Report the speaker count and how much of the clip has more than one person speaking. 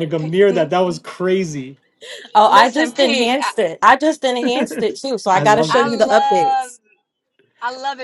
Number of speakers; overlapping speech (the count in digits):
3, about 35%